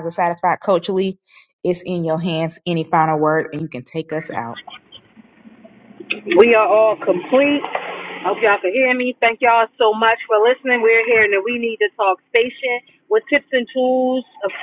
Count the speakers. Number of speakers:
two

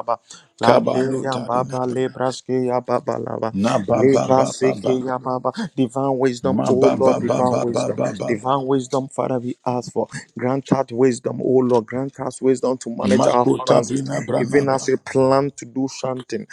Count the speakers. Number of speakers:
two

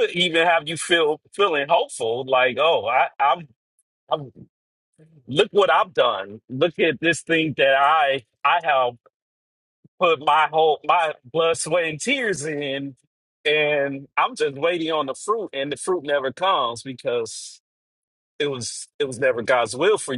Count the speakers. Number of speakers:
one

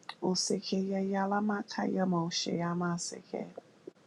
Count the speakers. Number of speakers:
one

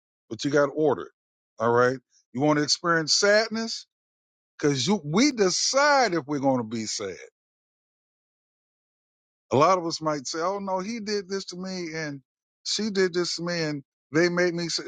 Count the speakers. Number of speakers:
one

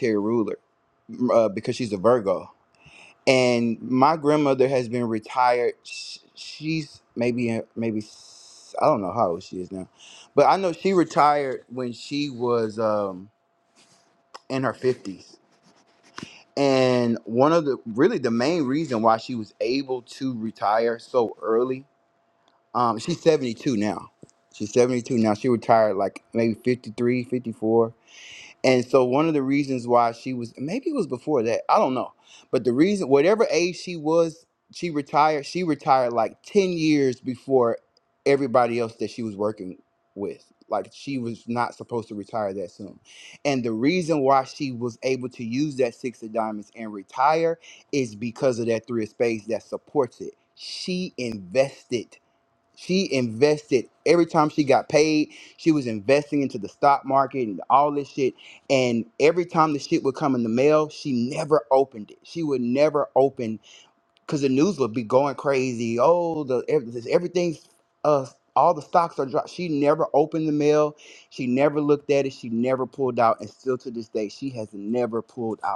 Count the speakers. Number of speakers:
one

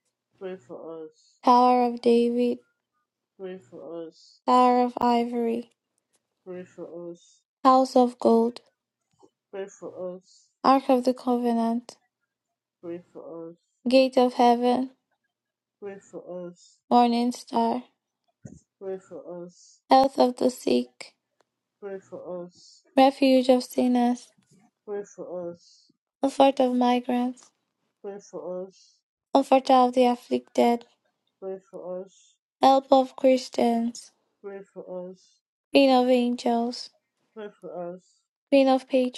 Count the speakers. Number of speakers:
two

